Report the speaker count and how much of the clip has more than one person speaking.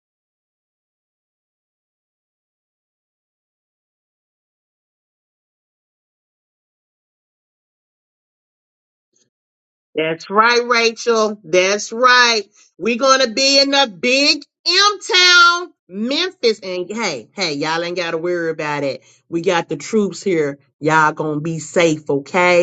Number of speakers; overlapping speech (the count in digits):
1, no overlap